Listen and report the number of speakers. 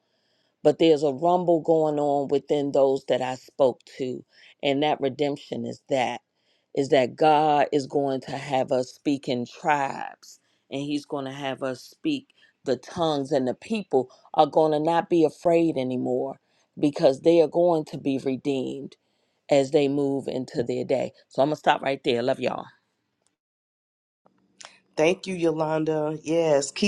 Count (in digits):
2